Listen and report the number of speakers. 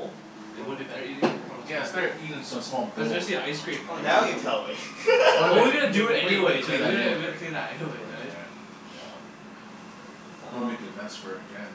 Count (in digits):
3